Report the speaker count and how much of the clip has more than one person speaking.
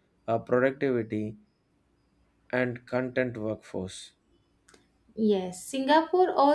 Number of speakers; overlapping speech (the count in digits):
2, no overlap